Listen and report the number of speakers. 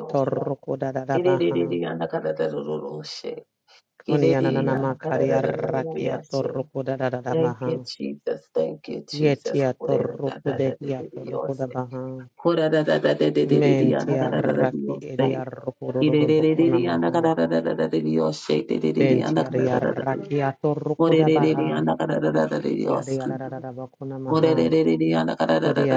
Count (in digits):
2